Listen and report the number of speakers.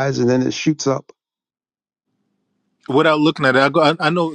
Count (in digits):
2